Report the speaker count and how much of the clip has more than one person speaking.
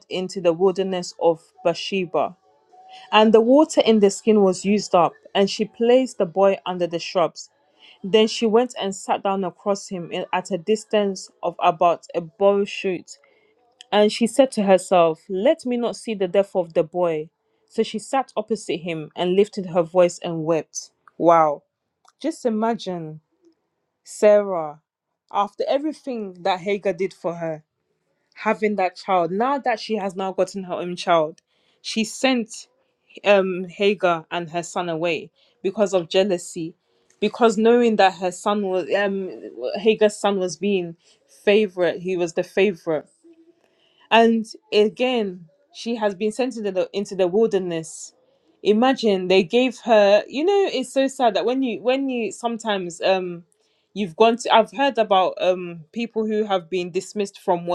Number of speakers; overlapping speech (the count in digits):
1, no overlap